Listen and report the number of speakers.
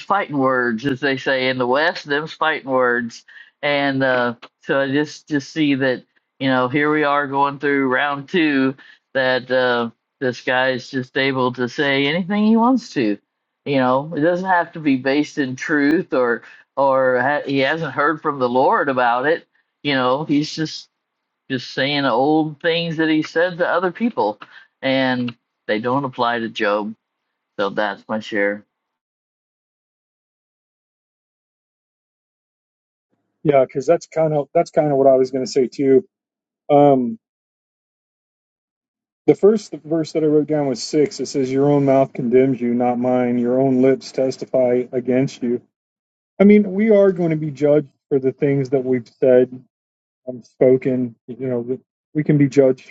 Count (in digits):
2